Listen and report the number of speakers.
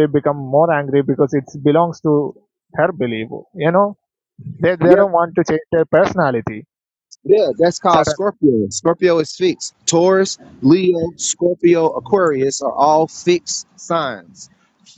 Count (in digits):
2